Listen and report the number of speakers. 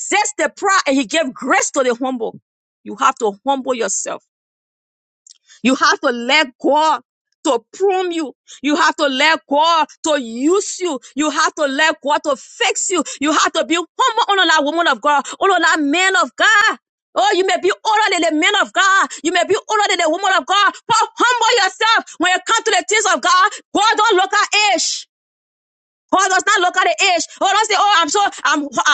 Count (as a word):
one